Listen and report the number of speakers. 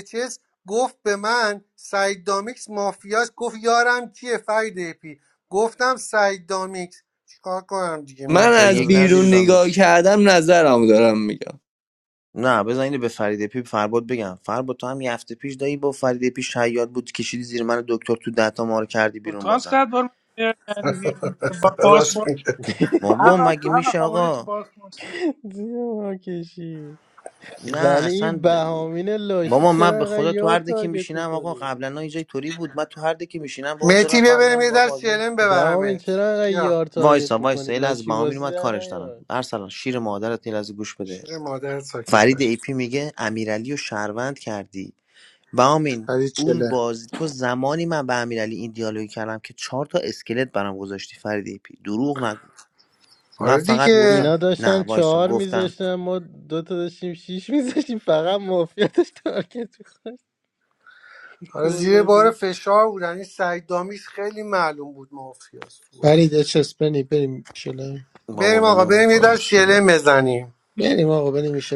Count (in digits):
6